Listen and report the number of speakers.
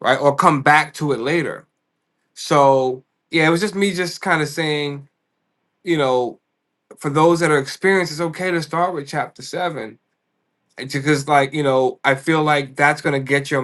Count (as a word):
one